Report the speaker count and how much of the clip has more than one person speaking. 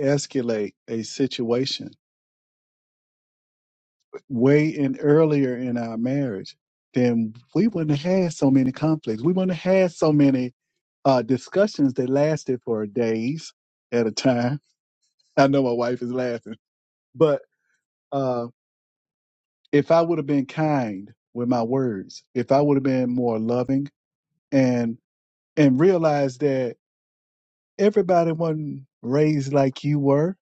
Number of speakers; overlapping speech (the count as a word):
one, no overlap